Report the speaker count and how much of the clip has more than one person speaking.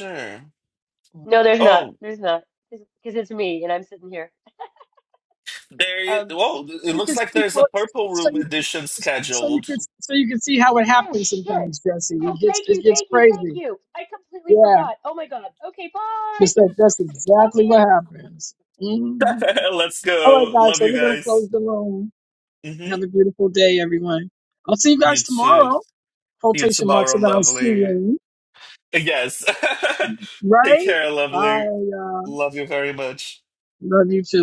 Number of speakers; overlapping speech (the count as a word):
three, about 26%